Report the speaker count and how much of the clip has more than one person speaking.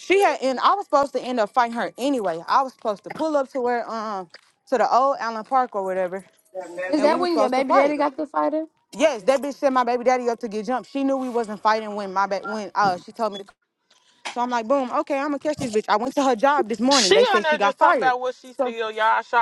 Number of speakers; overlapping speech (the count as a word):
three, about 12%